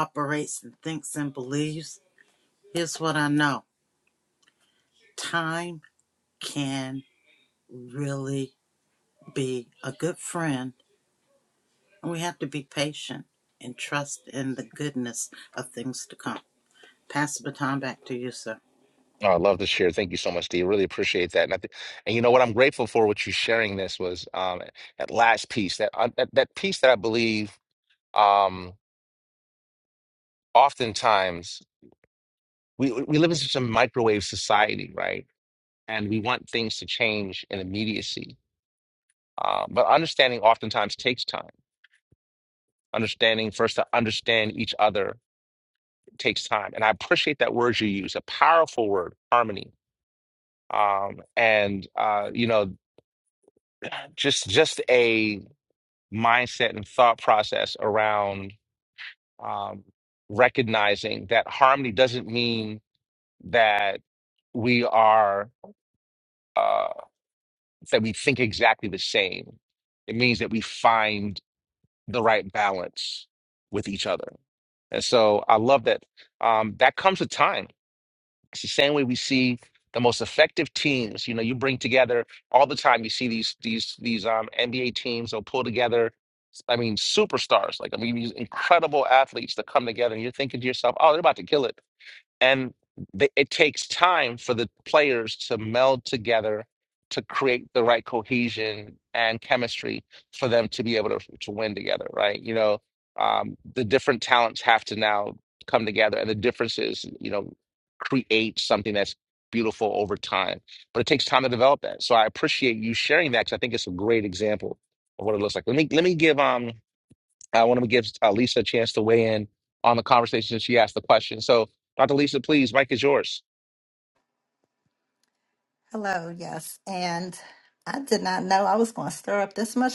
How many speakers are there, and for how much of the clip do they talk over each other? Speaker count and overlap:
3, no overlap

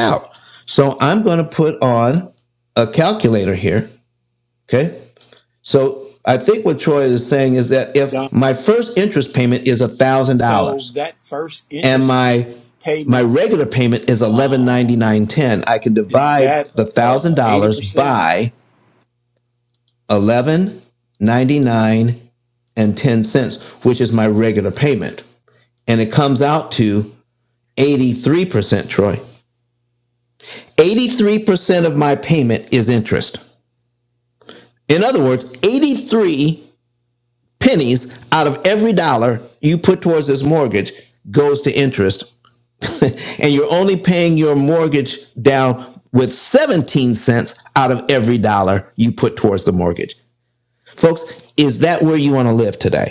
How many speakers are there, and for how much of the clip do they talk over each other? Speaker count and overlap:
2, about 6%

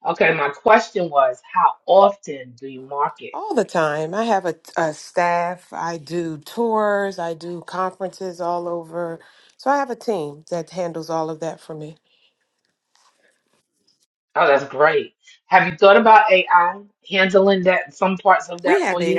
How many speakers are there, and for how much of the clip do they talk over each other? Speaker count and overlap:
2, about 3%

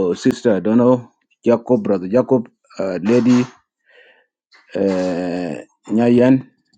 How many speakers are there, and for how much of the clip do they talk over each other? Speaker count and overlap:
1, no overlap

